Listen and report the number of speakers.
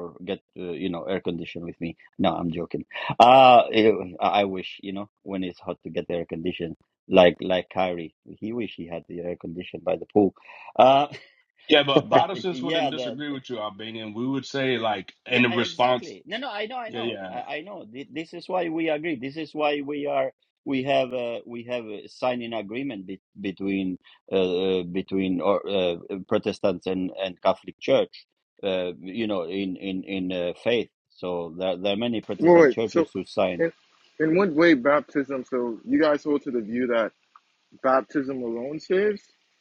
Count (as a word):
three